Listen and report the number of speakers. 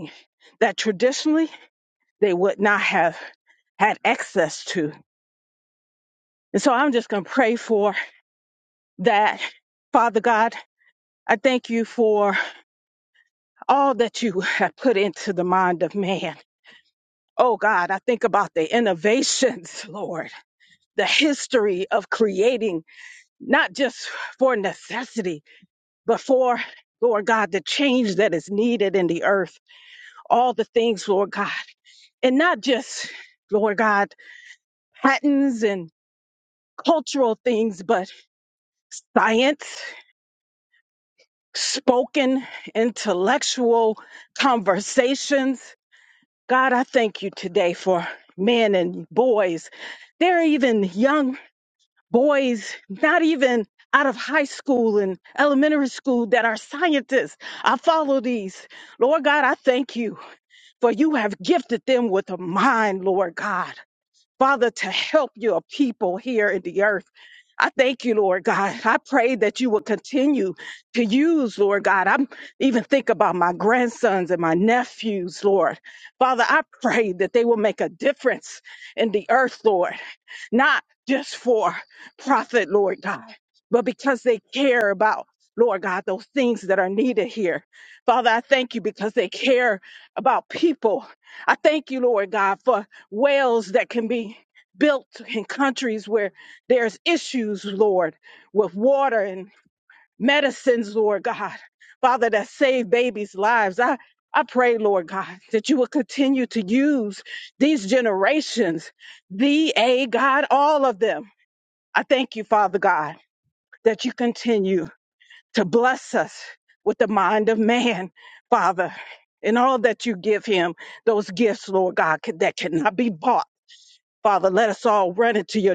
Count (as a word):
one